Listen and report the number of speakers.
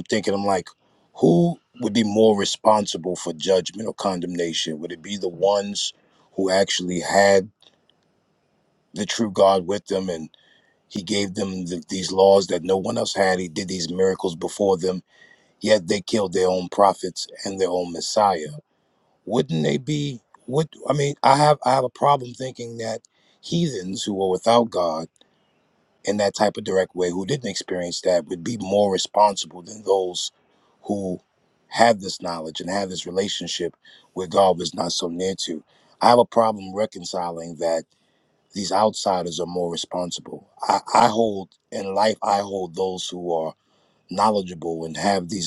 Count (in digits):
1